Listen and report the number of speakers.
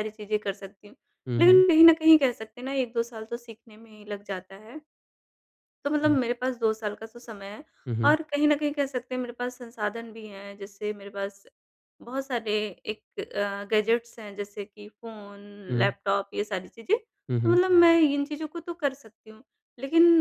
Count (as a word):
two